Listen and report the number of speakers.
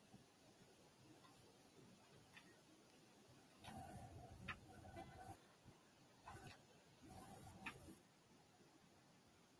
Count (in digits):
0